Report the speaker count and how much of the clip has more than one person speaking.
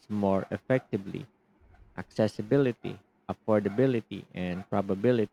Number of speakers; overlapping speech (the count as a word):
one, no overlap